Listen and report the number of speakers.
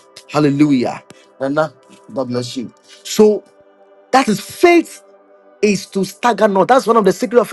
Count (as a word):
one